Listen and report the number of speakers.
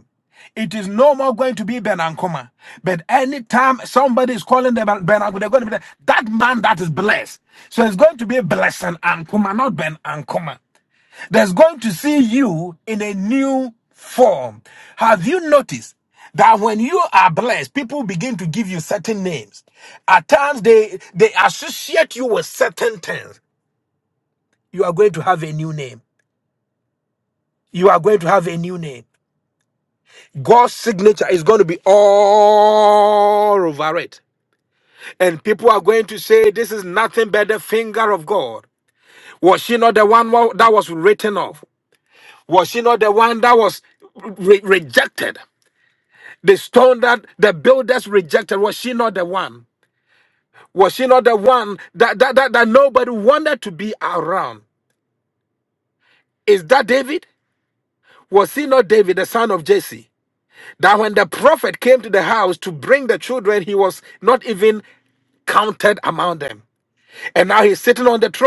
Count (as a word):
one